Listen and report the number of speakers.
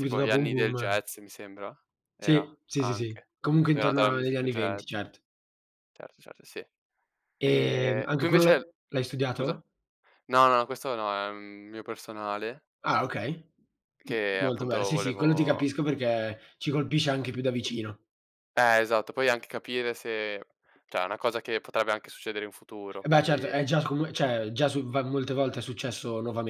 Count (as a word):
two